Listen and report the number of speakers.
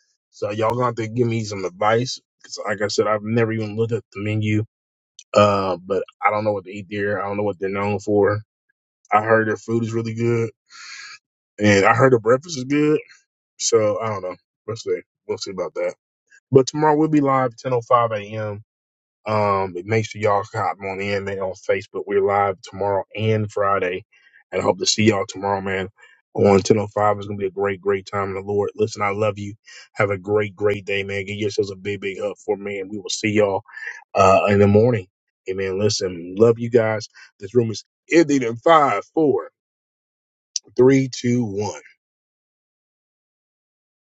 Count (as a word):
one